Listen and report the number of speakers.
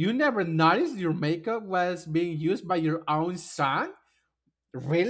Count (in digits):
1